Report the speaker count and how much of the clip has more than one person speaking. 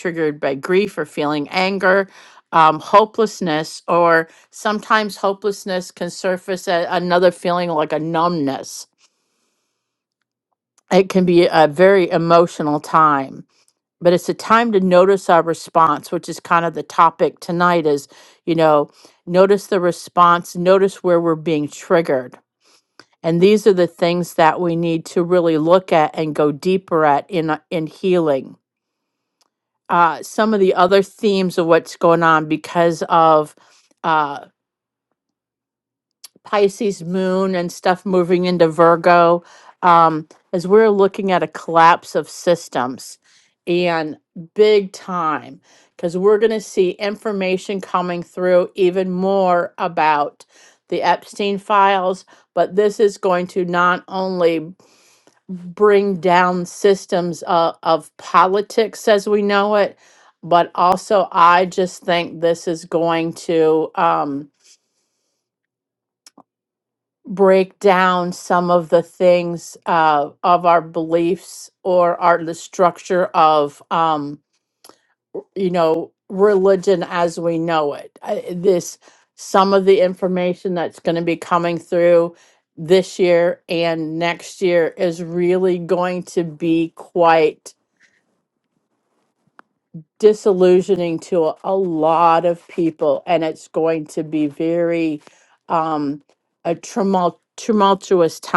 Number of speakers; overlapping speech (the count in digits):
1, no overlap